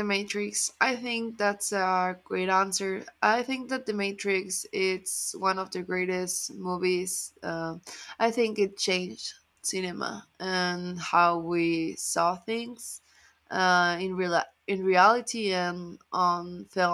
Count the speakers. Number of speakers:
one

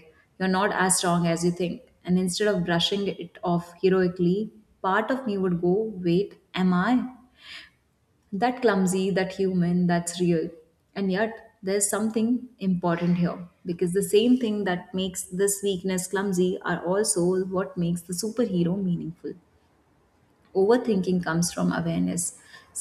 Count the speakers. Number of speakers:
one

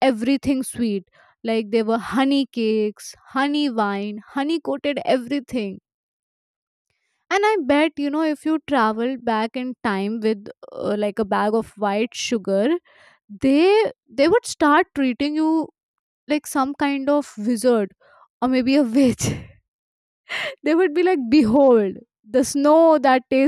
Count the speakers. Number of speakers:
one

